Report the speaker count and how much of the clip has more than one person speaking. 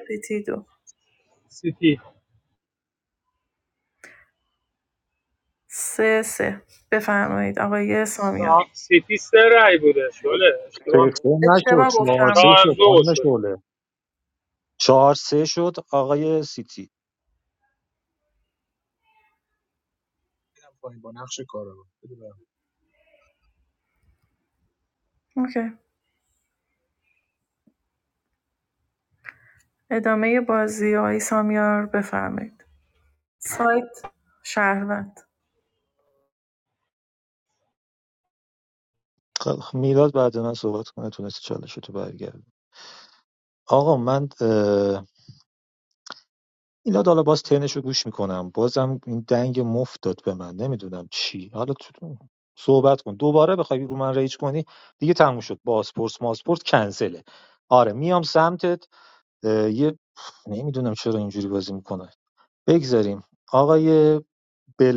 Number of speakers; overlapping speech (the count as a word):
four, about 3%